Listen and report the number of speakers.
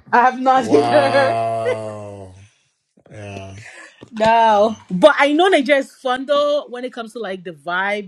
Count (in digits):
2